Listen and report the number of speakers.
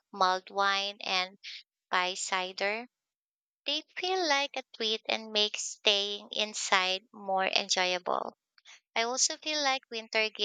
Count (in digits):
1